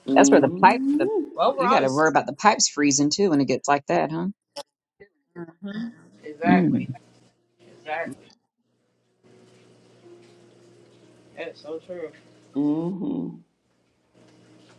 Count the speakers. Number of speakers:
three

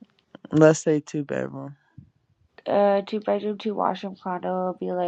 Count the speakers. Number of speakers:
two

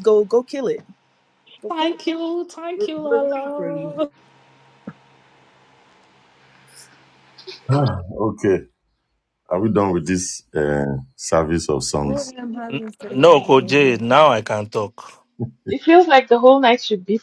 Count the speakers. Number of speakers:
six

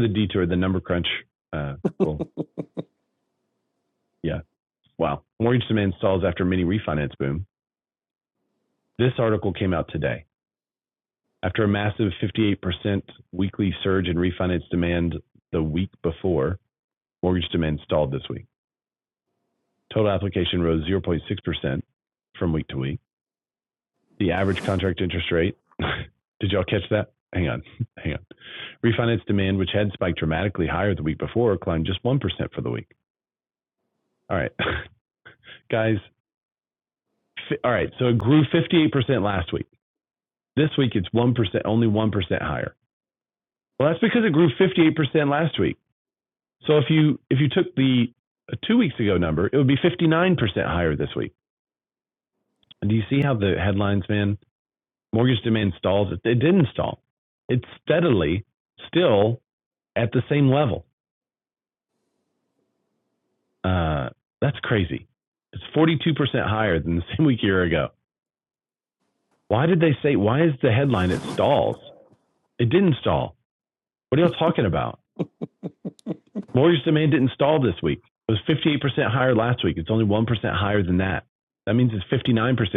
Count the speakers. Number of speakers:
one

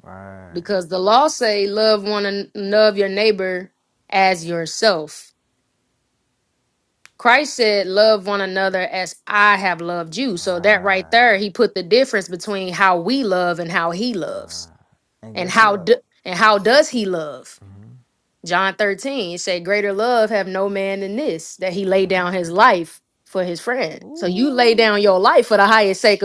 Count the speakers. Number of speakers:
two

